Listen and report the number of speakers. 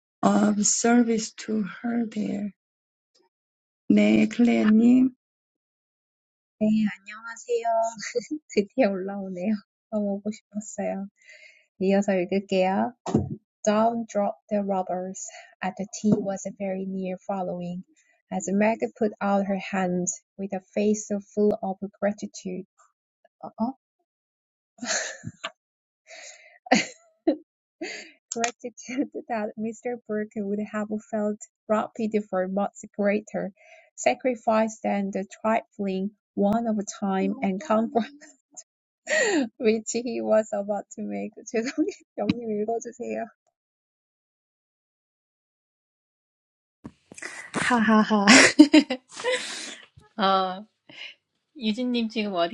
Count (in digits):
3